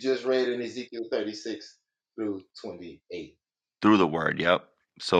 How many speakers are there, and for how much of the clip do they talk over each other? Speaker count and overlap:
two, no overlap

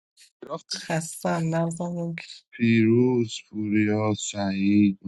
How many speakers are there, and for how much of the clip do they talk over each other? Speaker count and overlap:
two, no overlap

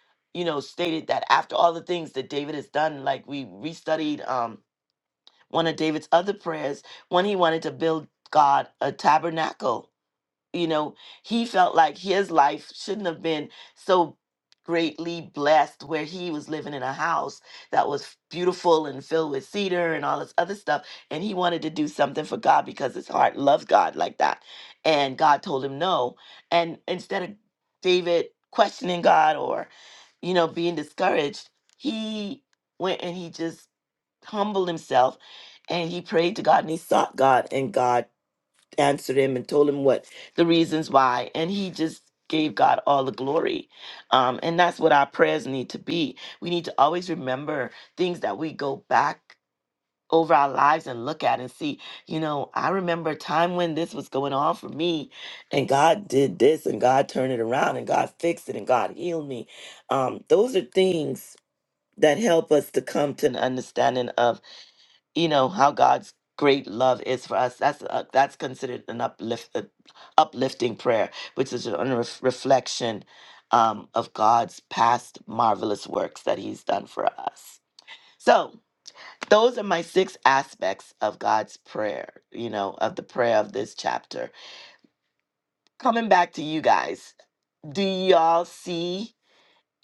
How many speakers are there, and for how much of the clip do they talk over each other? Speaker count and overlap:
one, no overlap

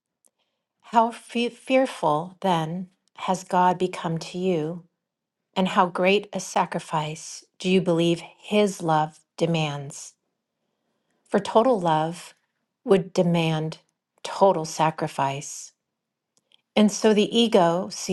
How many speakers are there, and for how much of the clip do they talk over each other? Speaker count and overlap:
one, no overlap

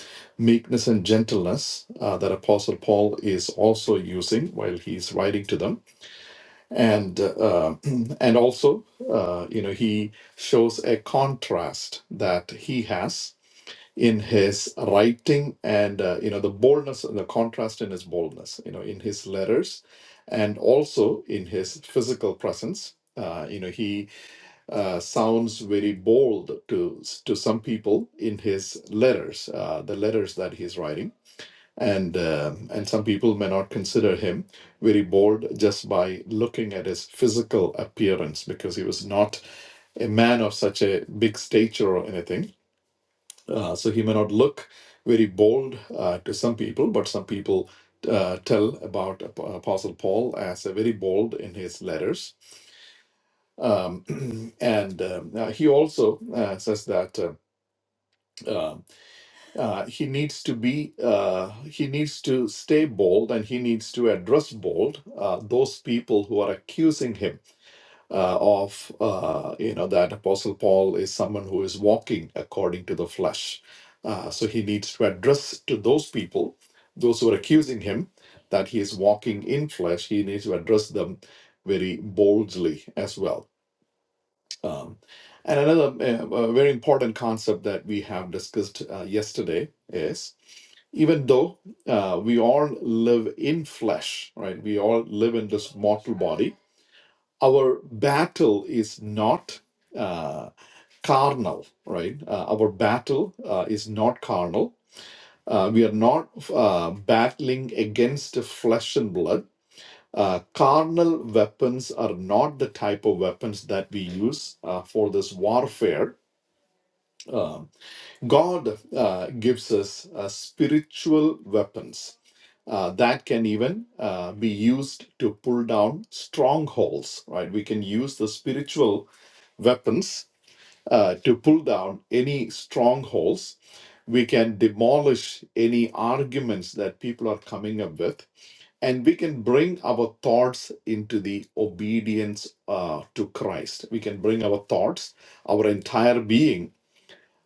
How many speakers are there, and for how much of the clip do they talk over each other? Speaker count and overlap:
one, no overlap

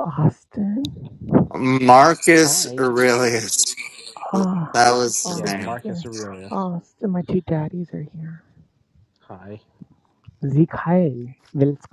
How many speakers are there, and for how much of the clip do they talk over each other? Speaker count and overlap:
three, about 14%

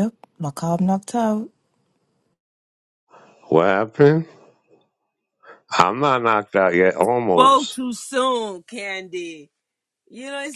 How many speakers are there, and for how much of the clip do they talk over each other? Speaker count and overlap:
three, about 3%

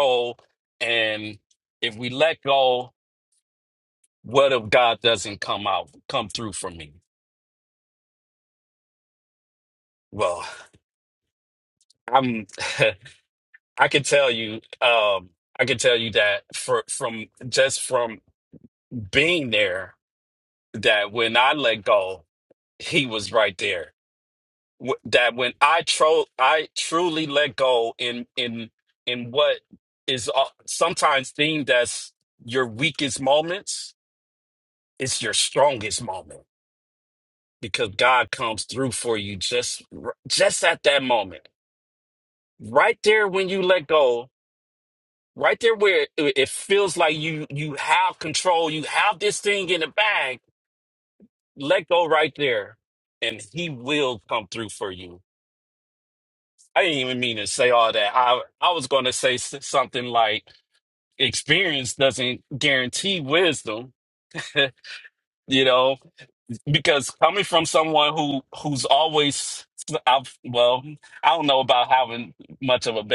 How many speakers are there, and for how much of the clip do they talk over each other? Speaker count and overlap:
one, no overlap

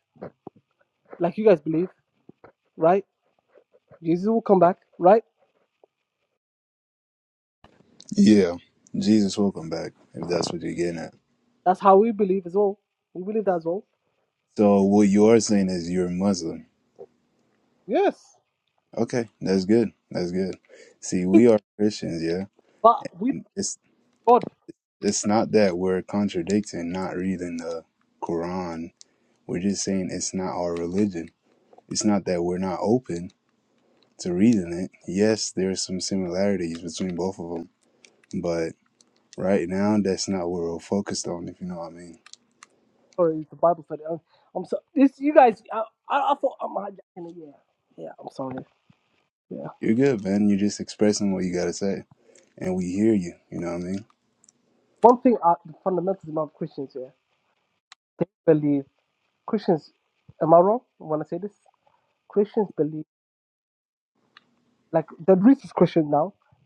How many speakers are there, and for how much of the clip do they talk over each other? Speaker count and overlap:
two, no overlap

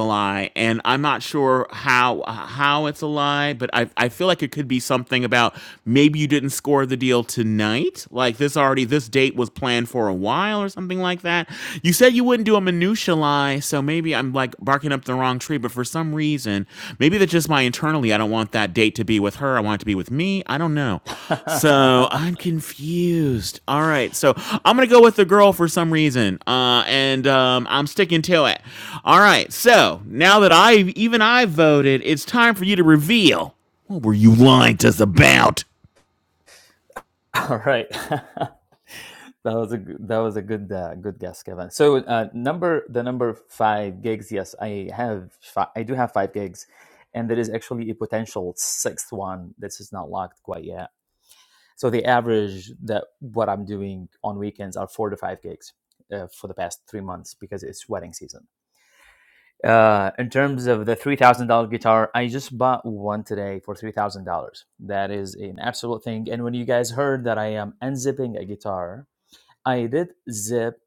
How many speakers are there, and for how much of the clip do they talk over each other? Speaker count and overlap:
two, no overlap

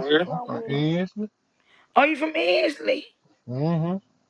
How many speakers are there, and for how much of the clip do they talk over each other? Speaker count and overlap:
two, about 20%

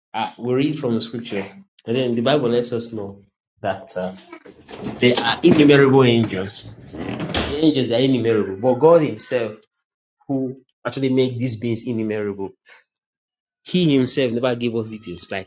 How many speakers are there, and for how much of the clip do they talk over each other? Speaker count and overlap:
one, no overlap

